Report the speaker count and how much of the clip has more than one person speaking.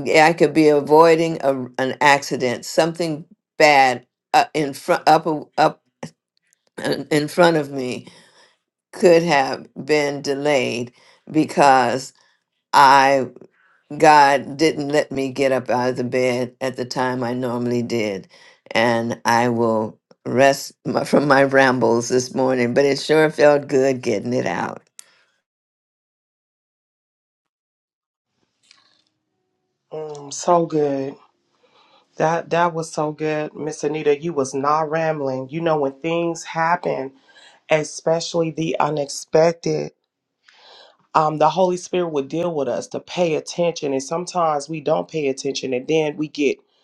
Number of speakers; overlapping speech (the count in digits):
2, no overlap